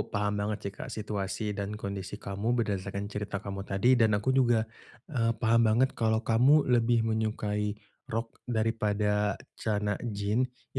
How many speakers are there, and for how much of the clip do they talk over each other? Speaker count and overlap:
one, no overlap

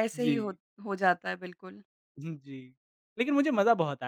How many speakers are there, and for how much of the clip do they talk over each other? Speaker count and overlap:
two, about 6%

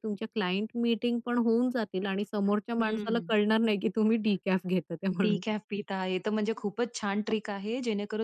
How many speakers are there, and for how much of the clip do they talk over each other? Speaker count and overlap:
two, about 9%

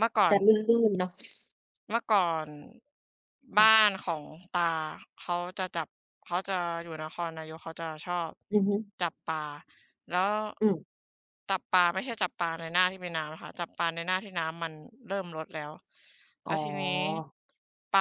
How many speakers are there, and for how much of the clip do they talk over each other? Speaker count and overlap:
two, about 4%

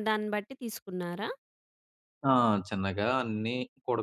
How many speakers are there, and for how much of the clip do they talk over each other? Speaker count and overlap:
two, no overlap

